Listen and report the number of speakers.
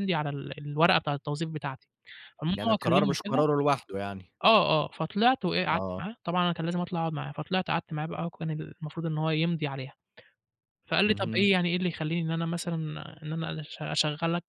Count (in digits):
2